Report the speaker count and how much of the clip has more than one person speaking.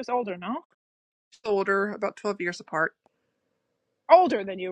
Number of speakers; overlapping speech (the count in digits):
2, no overlap